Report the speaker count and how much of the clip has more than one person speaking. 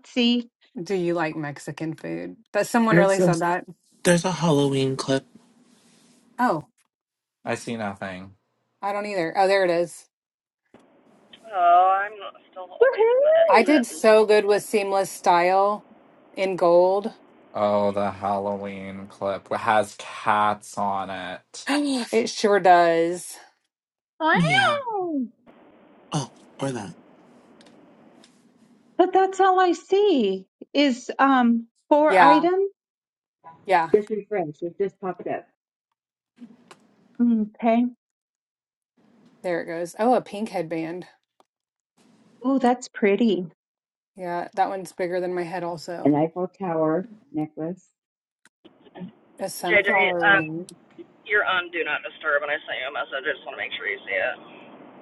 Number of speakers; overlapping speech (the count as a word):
six, about 6%